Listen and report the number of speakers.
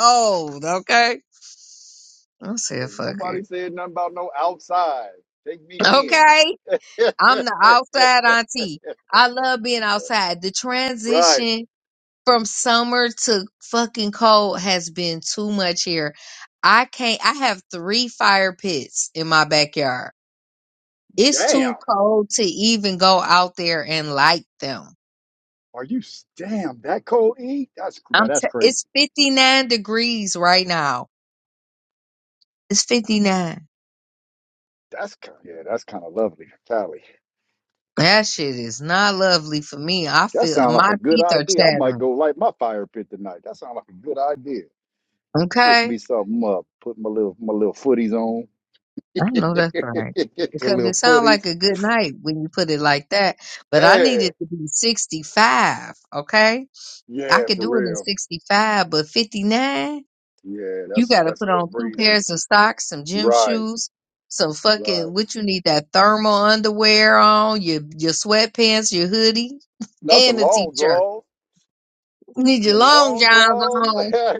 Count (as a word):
two